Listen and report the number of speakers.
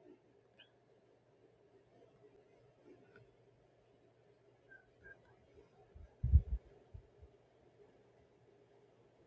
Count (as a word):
zero